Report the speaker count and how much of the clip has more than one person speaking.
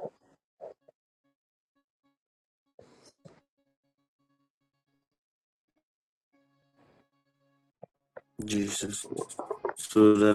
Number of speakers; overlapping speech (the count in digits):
1, no overlap